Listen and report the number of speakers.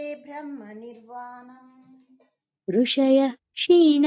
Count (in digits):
2